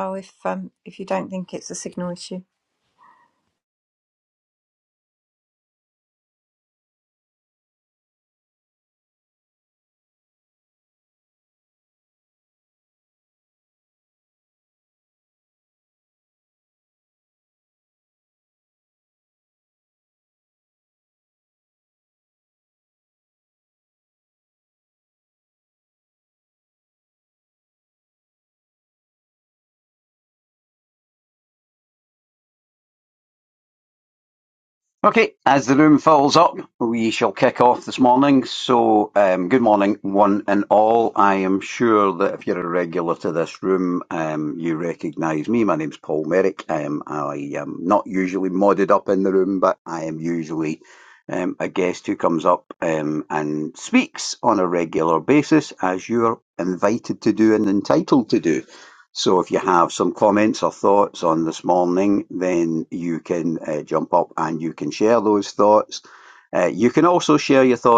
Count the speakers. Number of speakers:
two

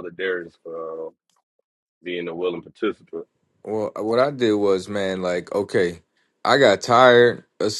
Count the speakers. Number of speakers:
two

